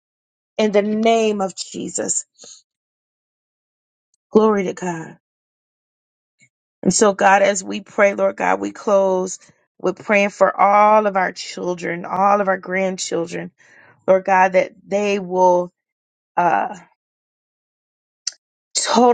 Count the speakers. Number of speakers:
one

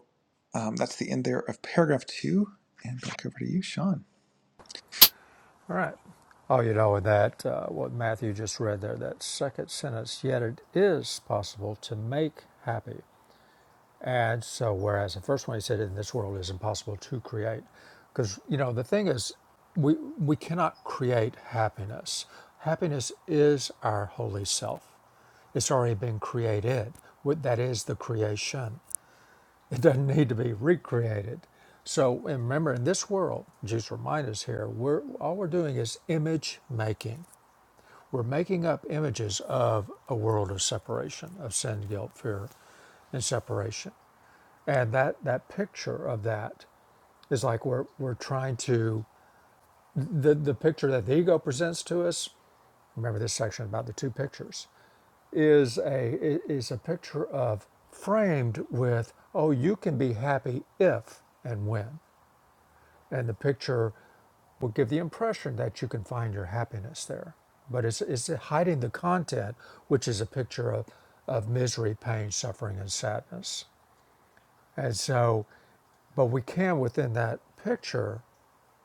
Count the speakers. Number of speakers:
two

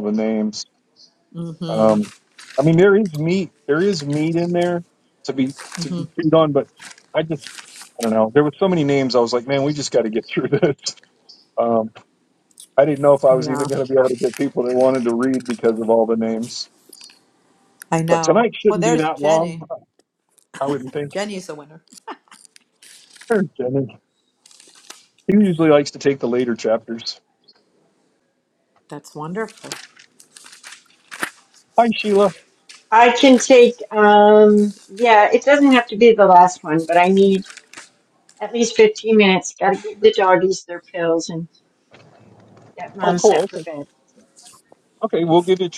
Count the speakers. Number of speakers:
three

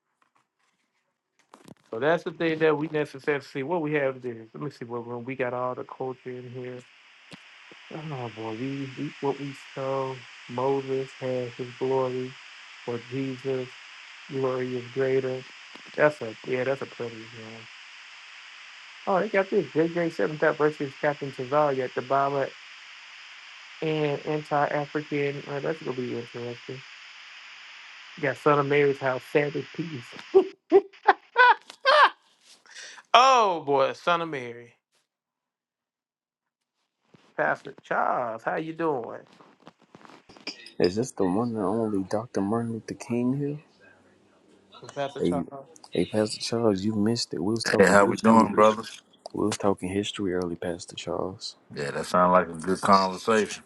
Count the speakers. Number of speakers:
three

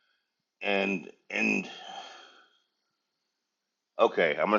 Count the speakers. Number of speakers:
one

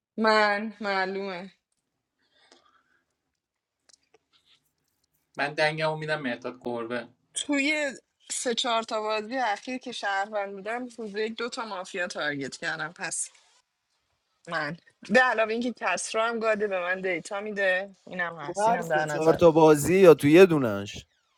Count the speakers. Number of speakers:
three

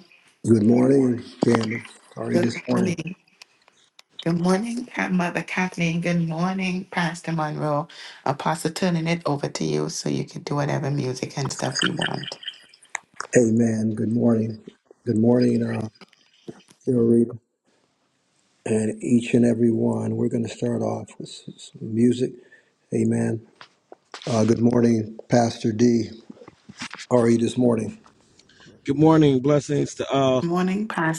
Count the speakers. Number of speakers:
three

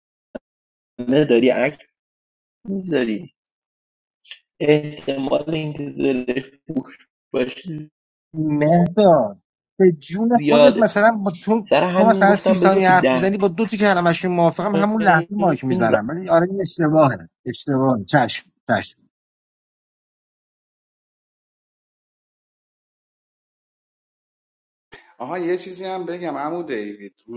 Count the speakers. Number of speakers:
three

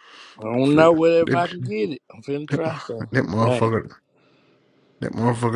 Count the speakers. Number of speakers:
two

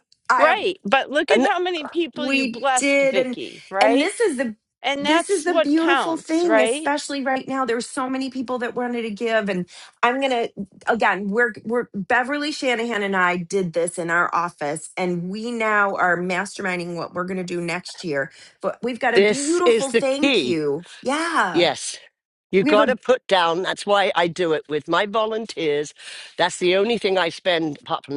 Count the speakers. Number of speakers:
three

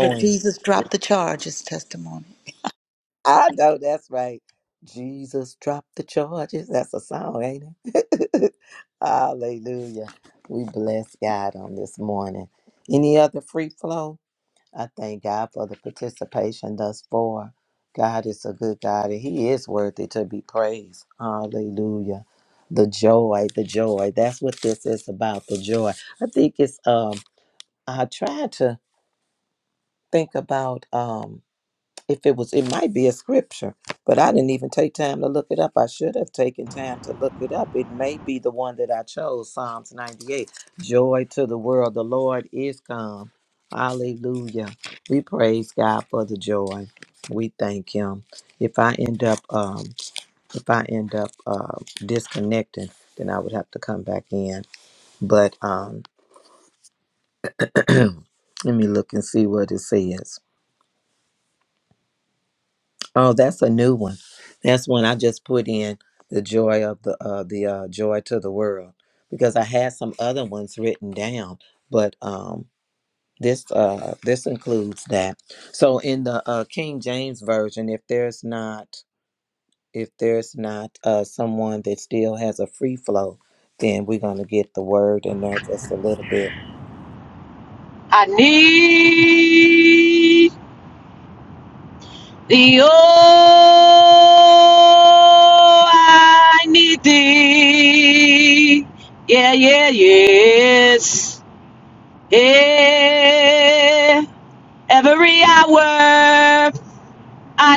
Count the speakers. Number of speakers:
three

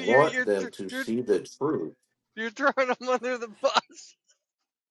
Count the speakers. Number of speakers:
two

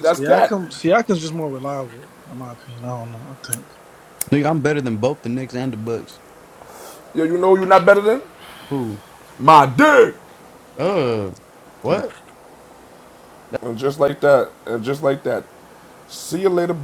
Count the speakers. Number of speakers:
three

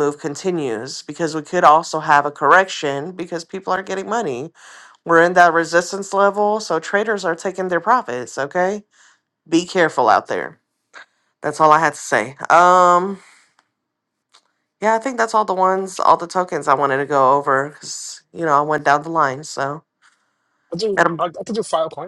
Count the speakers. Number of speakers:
two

